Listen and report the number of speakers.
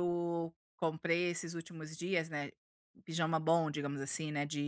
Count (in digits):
1